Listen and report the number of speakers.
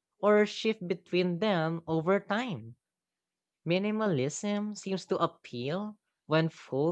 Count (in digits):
1